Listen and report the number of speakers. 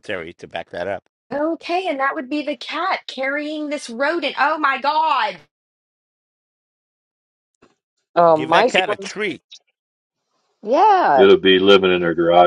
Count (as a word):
four